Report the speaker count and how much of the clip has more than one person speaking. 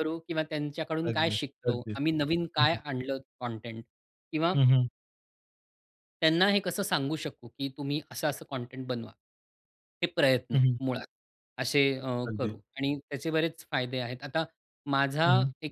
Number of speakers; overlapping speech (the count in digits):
2, about 12%